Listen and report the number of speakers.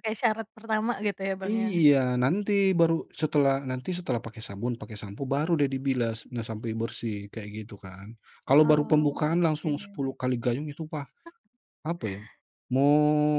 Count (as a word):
two